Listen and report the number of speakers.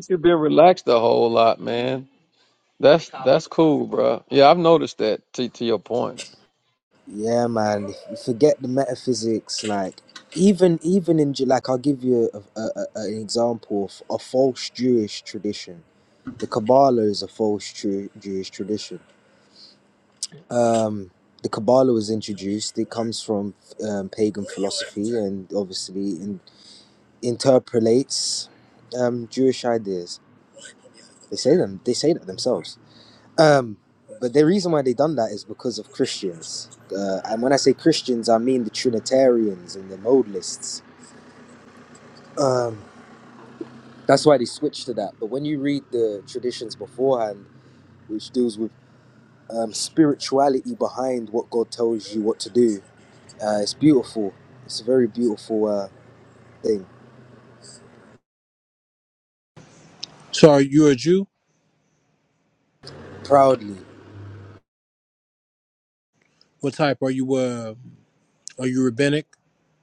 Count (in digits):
3